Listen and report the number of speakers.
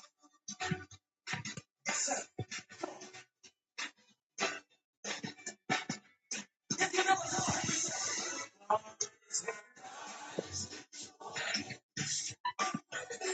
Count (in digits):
0